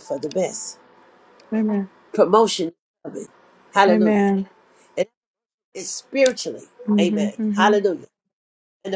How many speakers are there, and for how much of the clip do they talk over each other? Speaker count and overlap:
2, about 13%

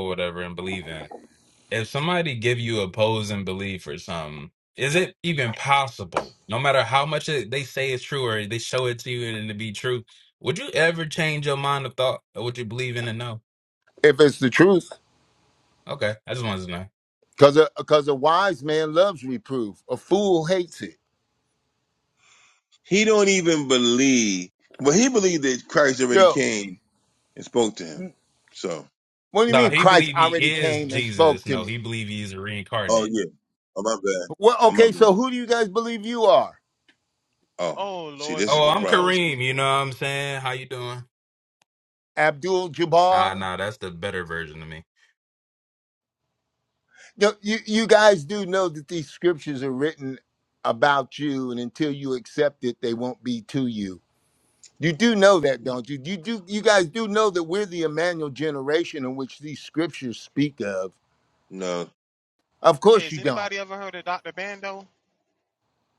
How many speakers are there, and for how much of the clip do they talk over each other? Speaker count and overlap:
4, about 8%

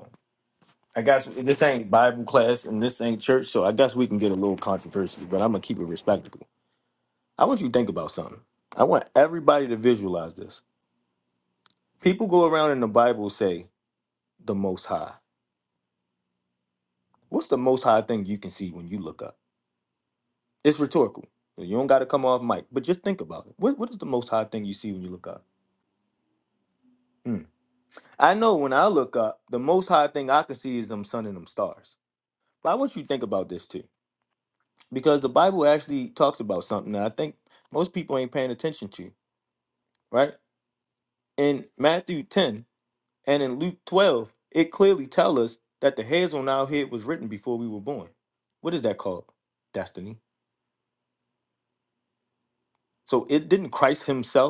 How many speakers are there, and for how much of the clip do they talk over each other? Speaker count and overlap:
1, no overlap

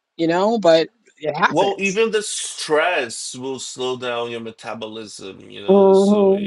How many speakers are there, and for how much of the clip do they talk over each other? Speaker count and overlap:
2, about 15%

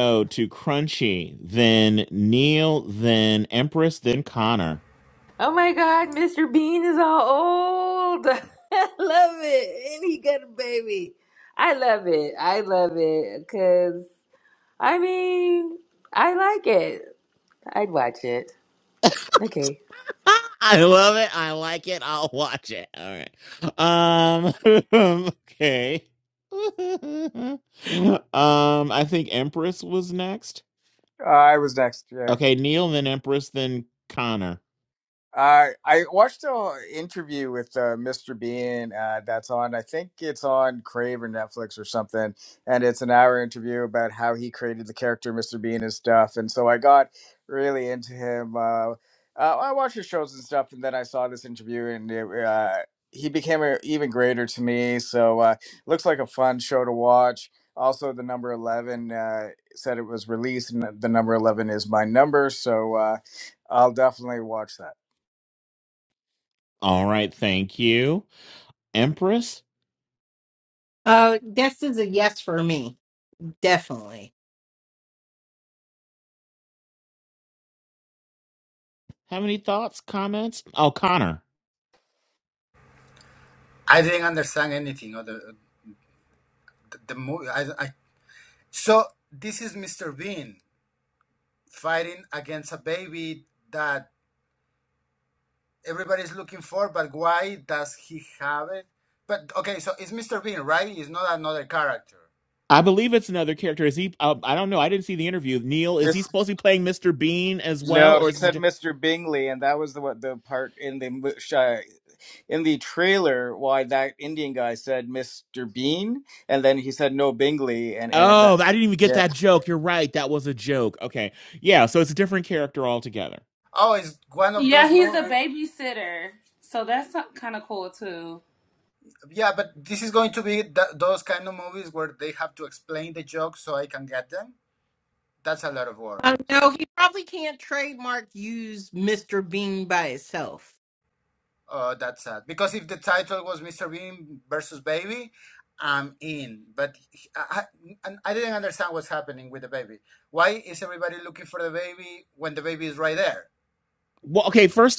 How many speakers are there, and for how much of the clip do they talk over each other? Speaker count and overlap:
6, about 2%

